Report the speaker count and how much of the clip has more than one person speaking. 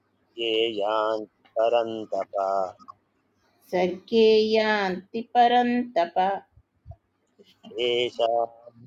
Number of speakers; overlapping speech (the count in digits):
2, no overlap